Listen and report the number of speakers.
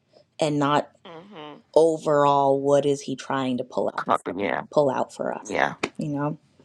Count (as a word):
two